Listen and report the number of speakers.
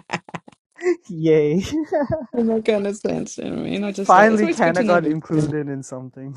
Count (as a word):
two